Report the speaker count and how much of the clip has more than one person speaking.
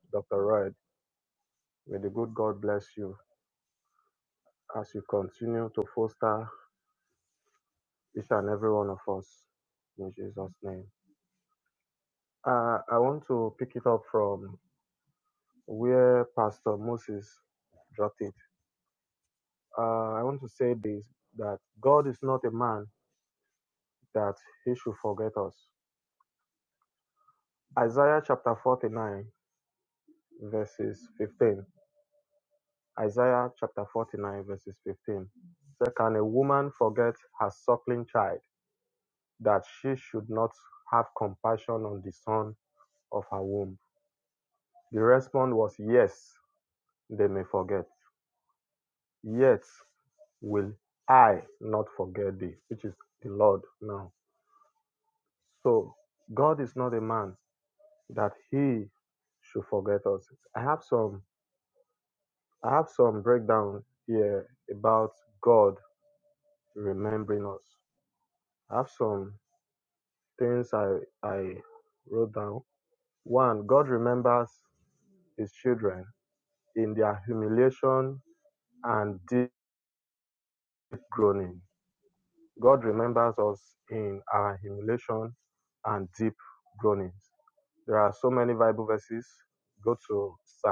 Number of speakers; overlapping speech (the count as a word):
one, no overlap